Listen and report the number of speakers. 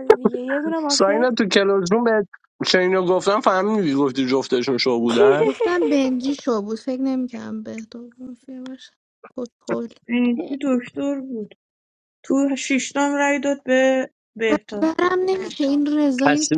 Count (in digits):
4